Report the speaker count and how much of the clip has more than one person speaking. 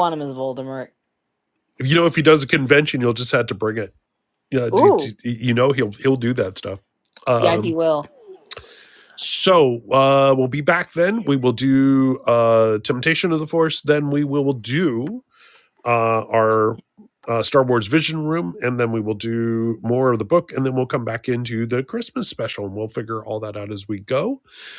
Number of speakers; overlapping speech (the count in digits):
2, about 3%